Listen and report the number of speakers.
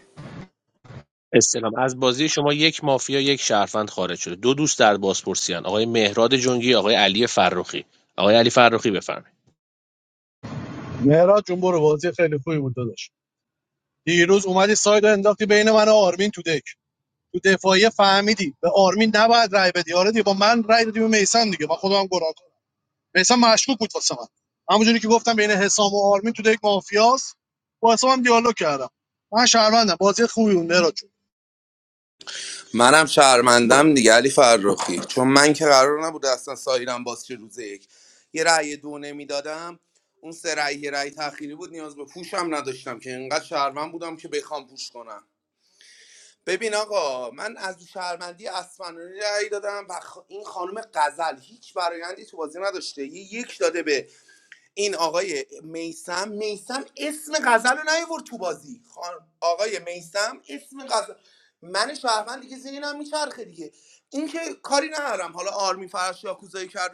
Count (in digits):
3